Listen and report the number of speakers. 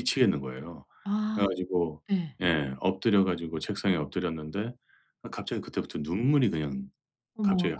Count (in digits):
2